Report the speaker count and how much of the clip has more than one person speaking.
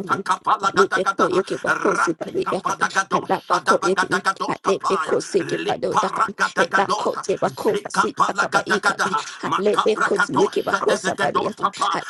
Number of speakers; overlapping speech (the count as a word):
two, about 83%